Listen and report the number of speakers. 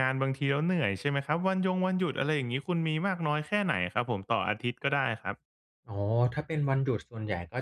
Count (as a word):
two